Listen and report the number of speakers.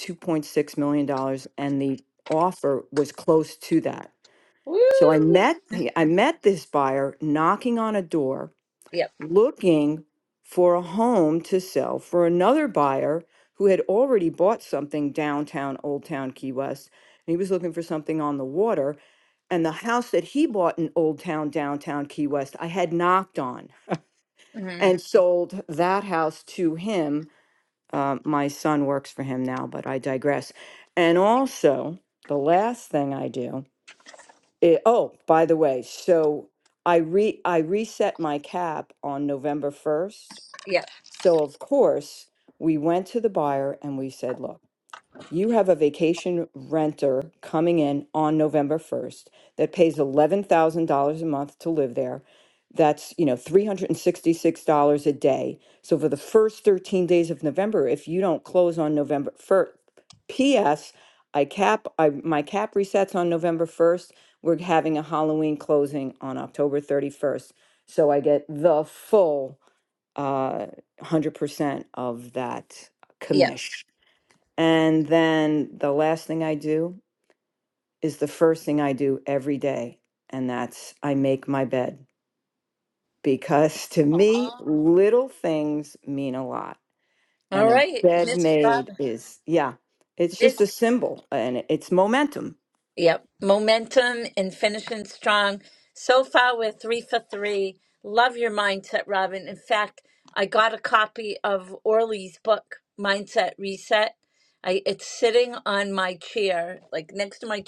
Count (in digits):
2